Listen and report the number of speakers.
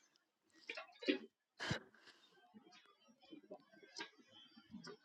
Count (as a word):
zero